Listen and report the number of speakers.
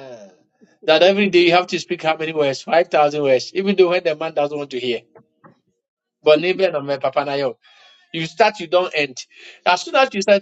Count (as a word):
one